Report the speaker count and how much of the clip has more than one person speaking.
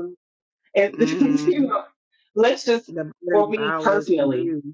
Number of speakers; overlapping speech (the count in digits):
2, about 37%